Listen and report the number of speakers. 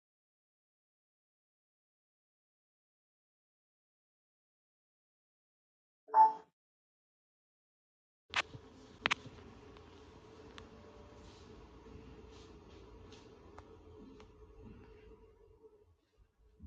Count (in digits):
0